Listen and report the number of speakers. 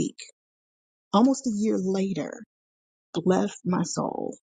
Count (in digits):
1